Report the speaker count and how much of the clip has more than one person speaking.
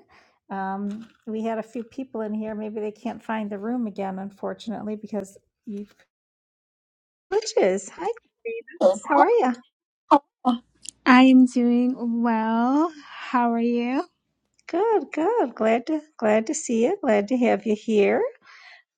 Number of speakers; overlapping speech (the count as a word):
two, no overlap